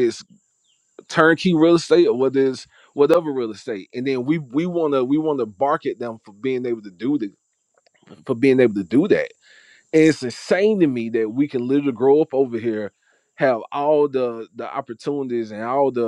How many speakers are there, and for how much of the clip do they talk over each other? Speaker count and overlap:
one, no overlap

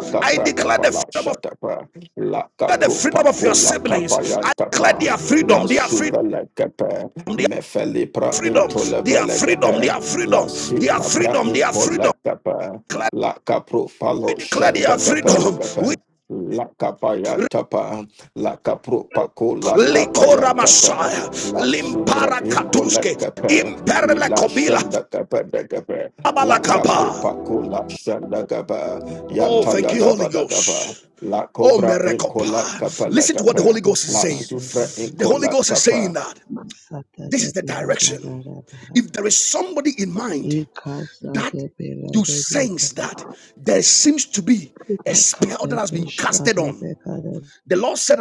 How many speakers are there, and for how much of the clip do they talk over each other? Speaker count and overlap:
three, about 53%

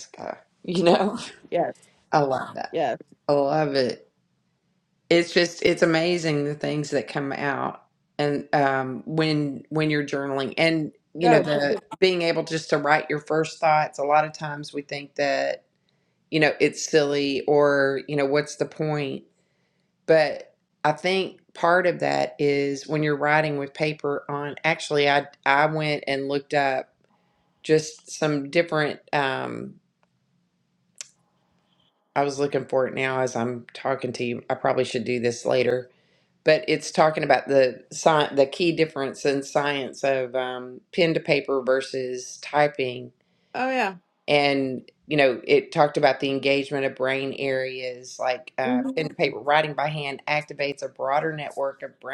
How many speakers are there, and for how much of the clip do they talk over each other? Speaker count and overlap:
two, about 2%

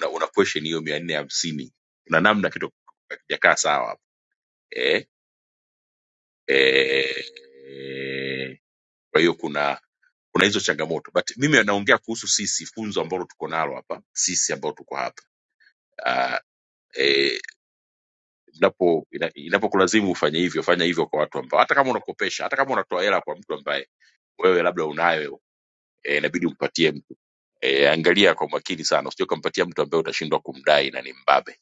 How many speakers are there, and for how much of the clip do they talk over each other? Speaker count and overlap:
one, no overlap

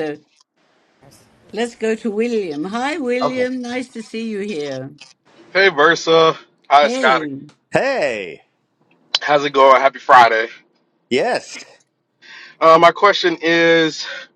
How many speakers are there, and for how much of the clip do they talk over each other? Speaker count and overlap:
three, about 5%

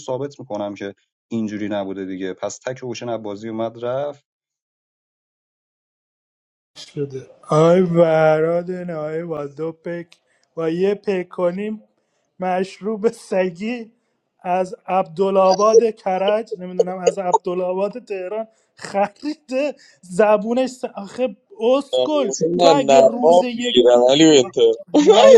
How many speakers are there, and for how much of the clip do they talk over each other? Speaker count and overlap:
three, about 5%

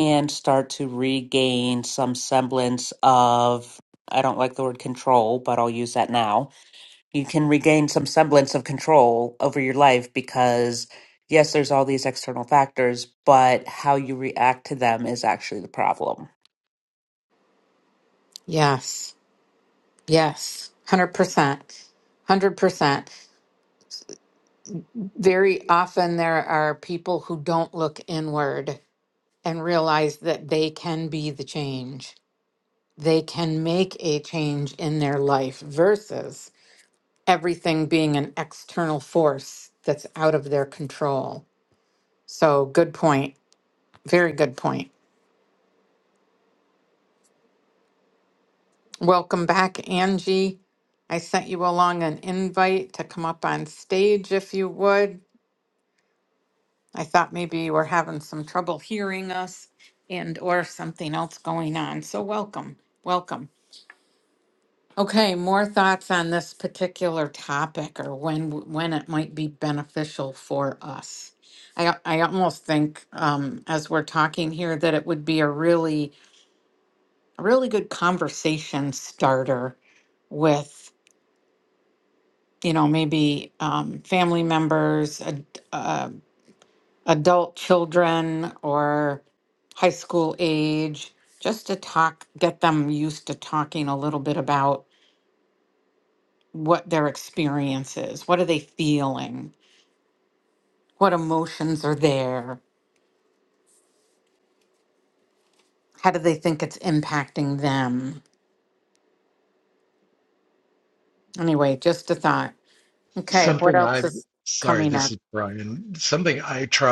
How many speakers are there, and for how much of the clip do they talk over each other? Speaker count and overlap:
three, about 1%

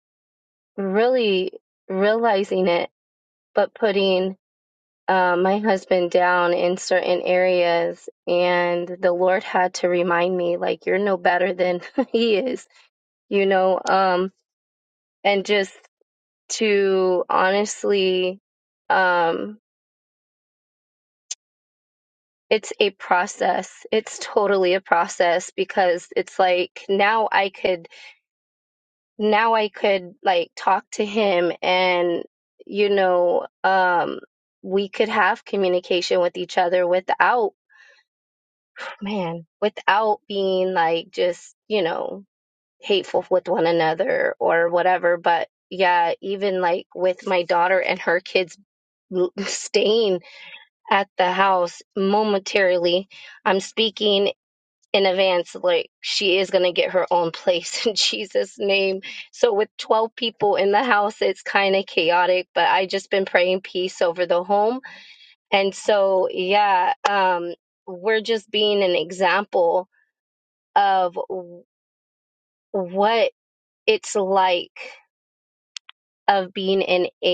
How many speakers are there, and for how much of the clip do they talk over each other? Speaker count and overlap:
one, no overlap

